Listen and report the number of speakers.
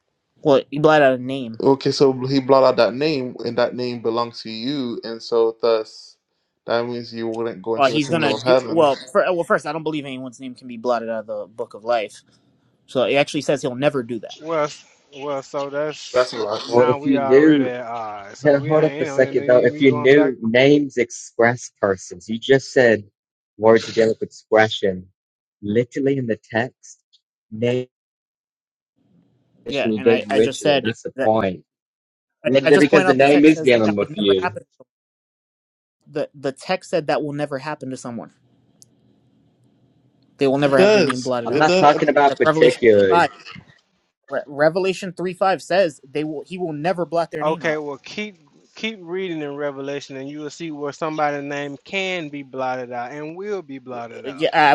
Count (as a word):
four